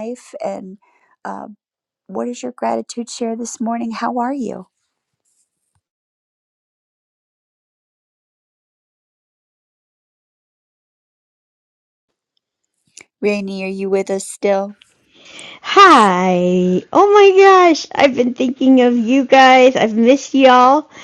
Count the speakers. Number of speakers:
2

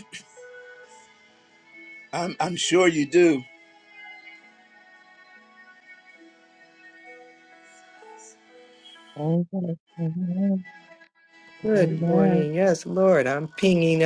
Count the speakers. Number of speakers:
3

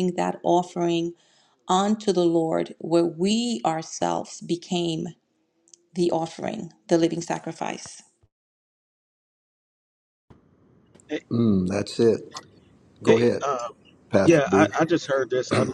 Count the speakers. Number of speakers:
3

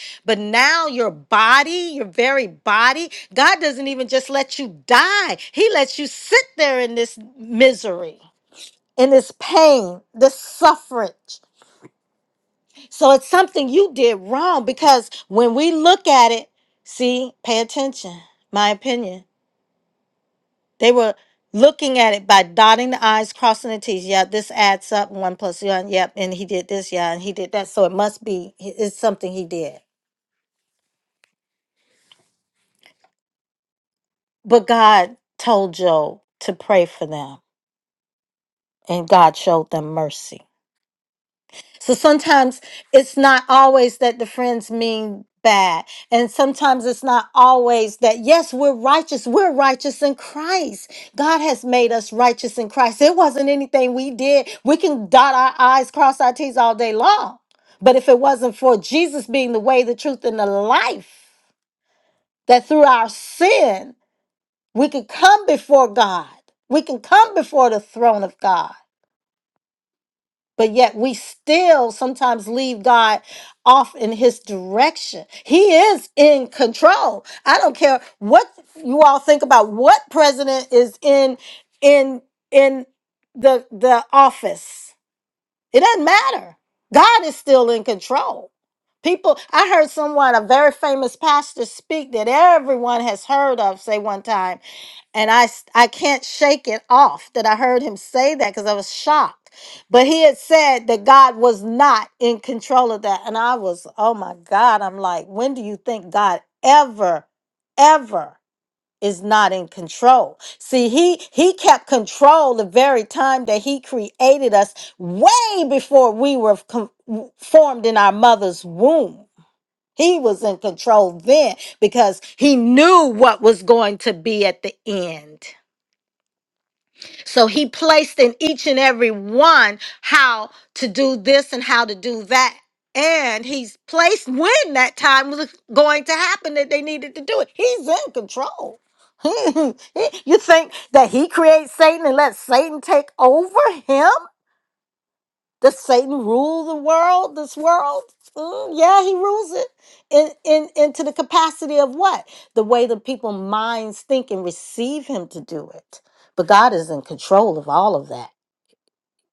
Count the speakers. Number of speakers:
1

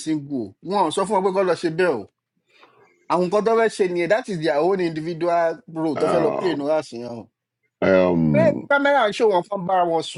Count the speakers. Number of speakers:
2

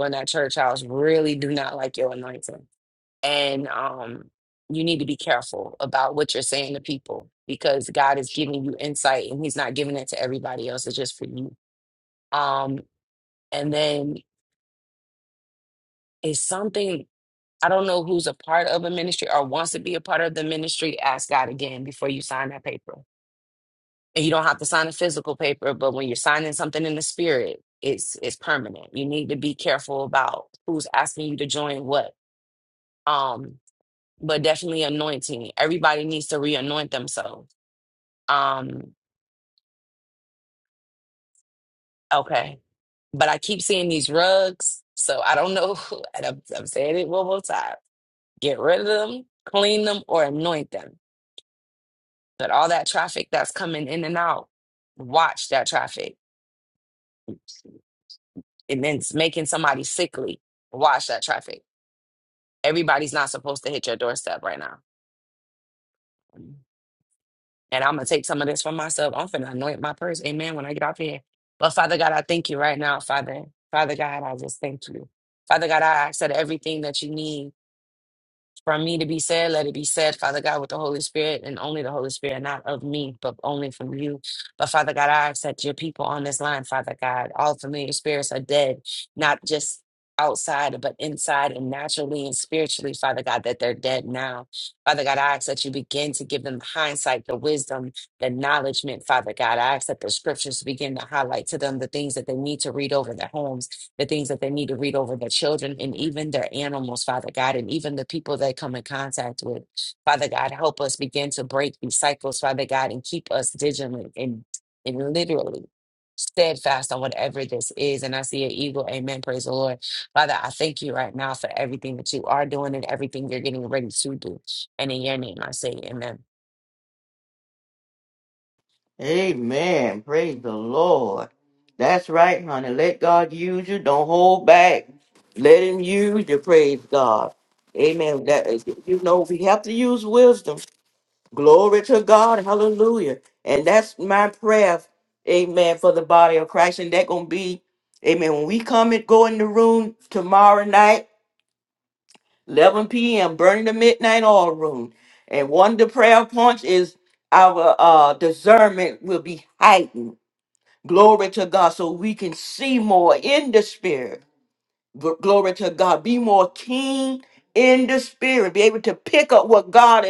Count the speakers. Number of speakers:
2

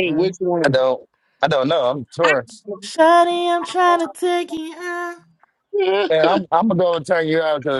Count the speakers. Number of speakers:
3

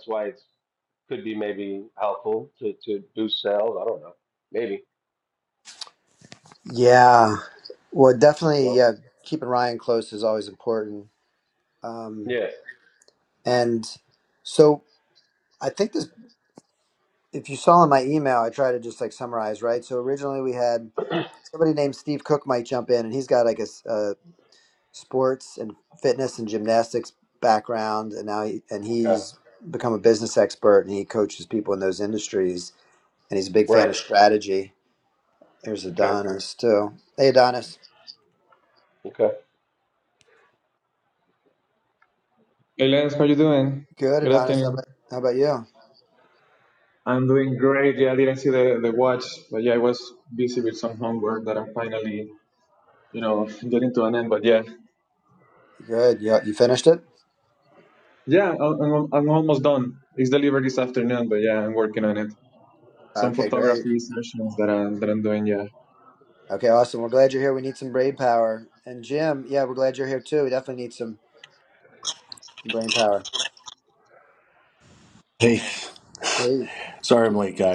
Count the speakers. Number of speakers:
4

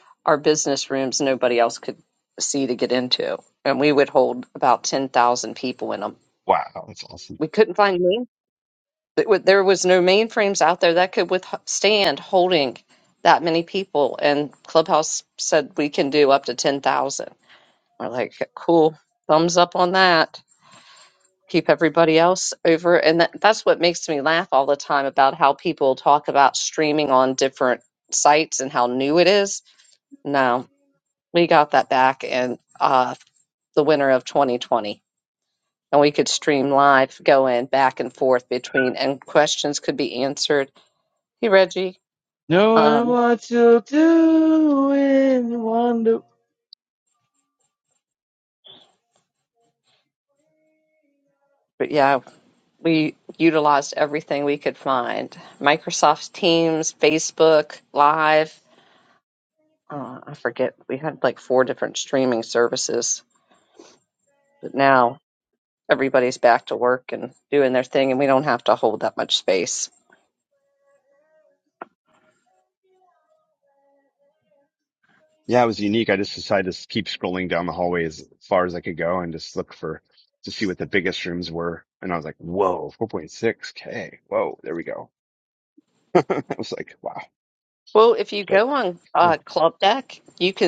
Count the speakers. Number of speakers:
3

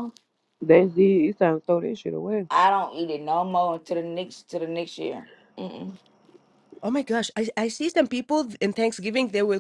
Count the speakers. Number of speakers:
3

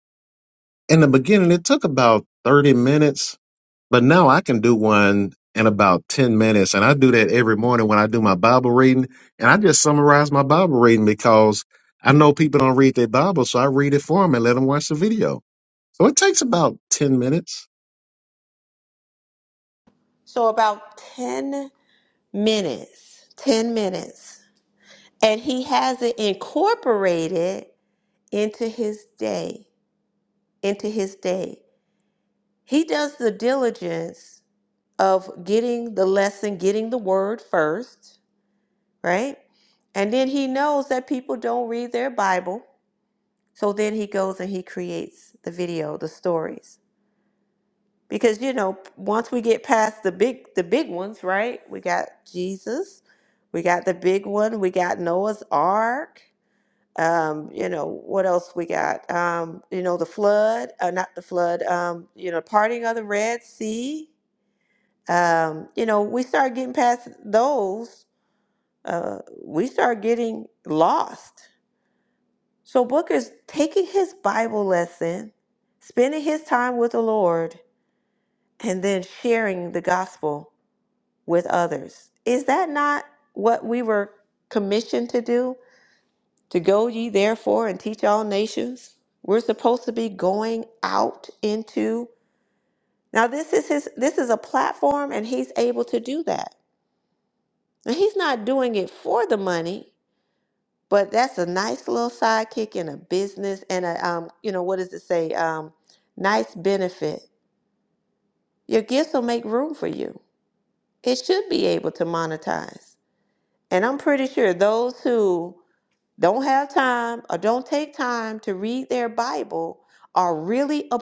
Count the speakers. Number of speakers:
2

